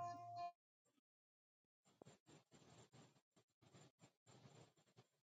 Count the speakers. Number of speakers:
zero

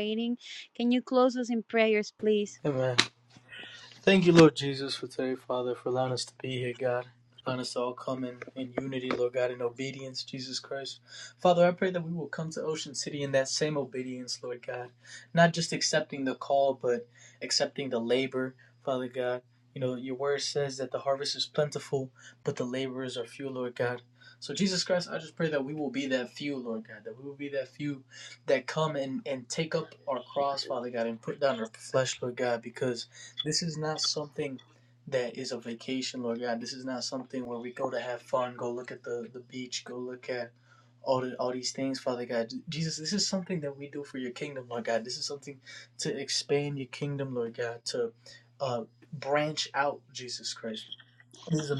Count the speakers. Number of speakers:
two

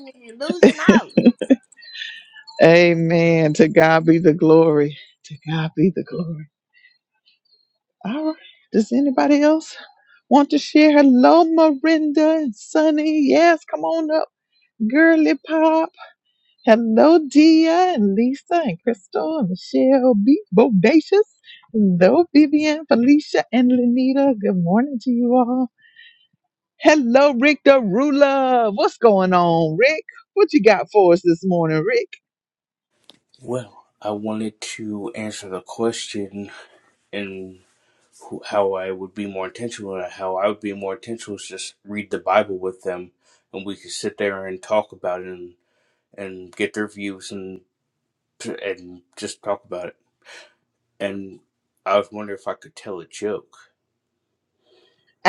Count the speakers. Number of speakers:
three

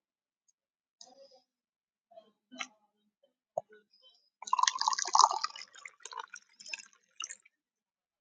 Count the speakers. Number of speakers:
zero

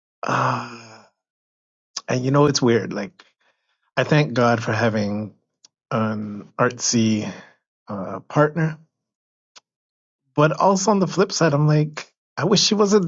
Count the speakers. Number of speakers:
one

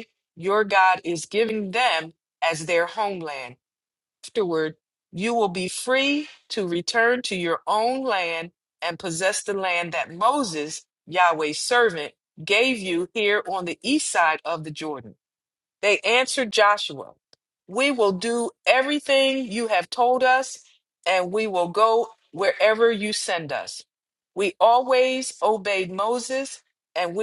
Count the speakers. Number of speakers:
one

